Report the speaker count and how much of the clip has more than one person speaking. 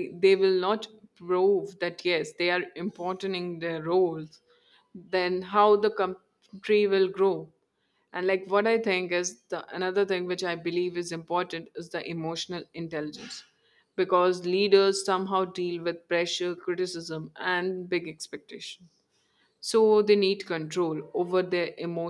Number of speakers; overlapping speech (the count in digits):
1, no overlap